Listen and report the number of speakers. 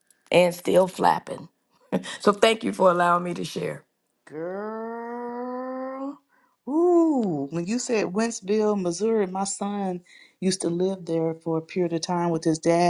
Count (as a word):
two